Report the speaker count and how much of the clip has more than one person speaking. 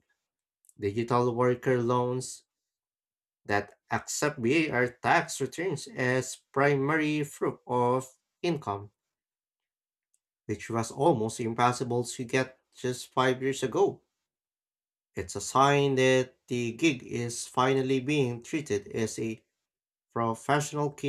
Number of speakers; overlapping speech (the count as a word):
one, no overlap